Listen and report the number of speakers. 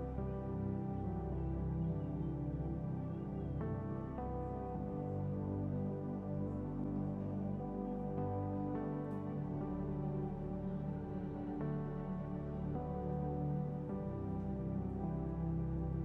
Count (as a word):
zero